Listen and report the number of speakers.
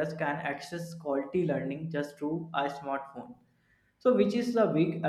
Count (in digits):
1